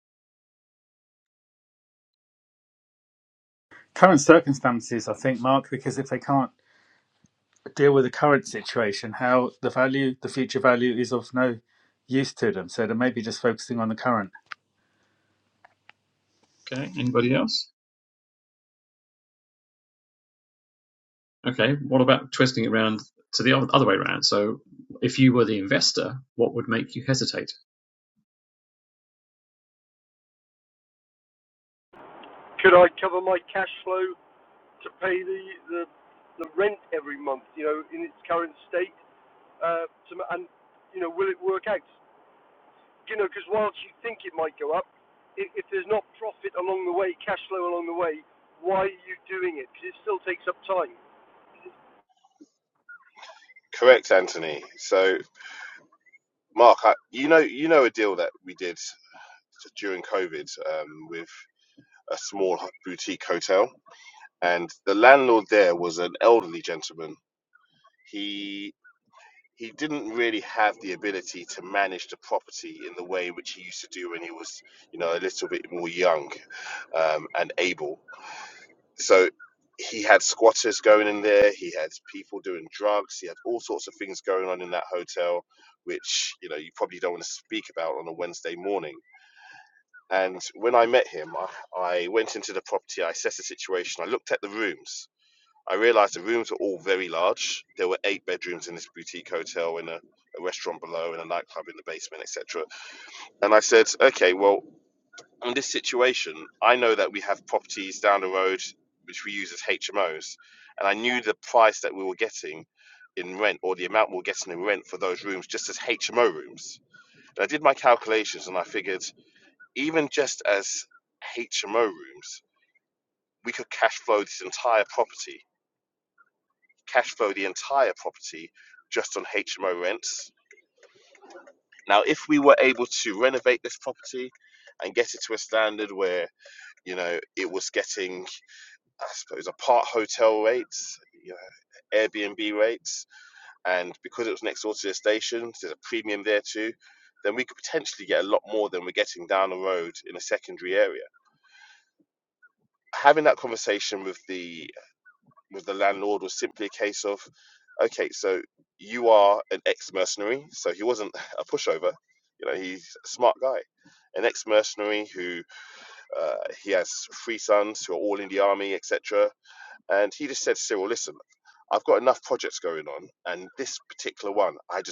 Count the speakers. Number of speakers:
four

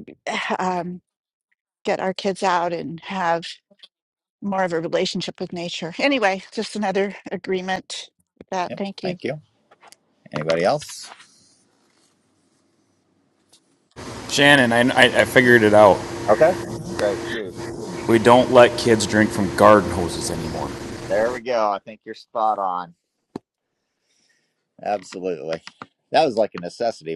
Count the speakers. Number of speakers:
three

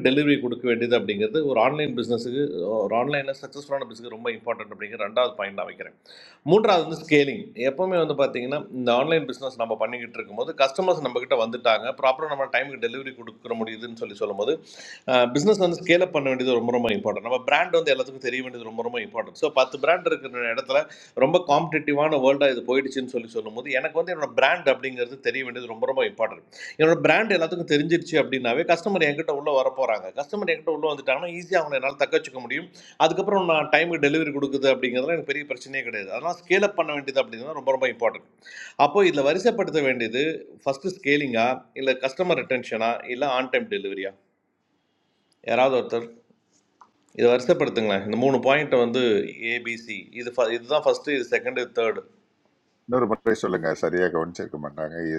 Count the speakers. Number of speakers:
two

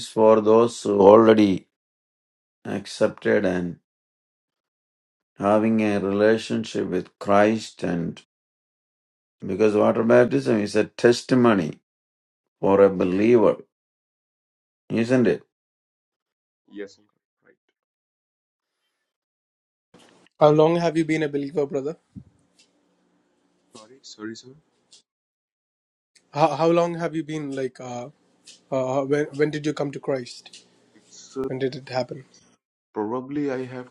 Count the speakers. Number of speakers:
three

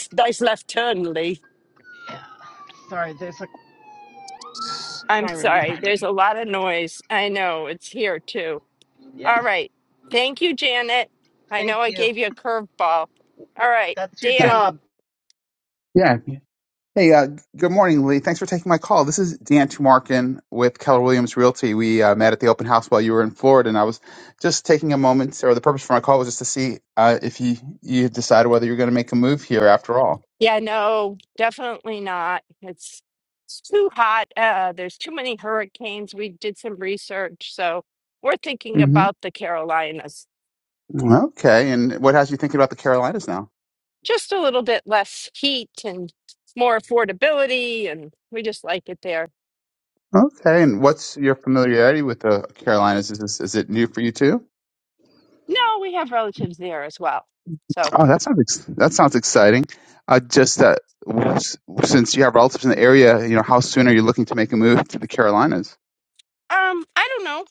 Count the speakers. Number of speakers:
four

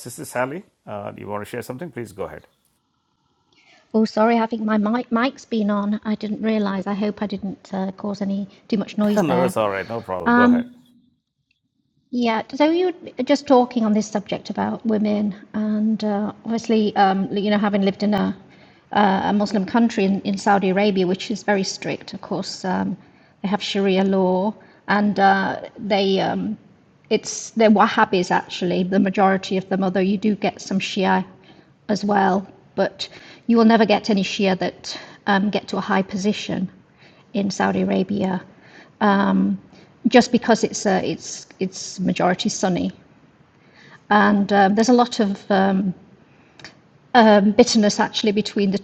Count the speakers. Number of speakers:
two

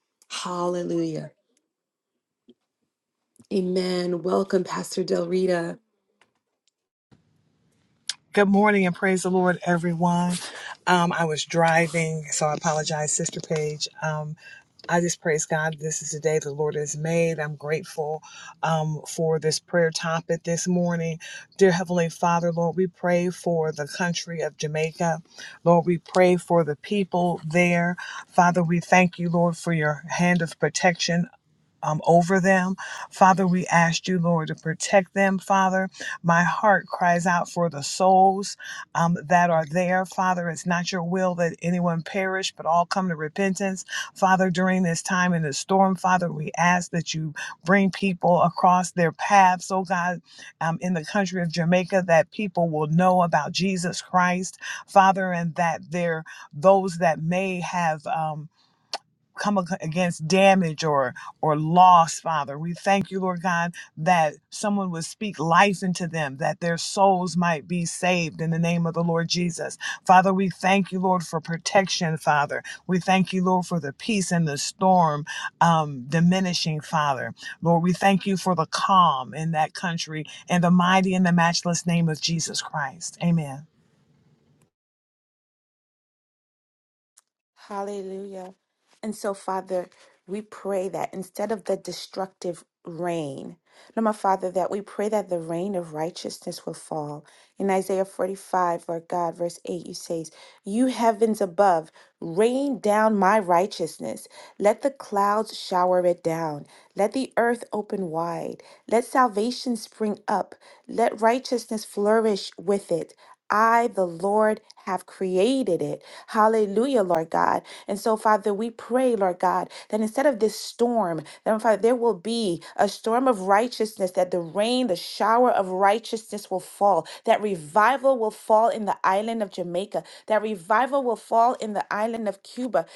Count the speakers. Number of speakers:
three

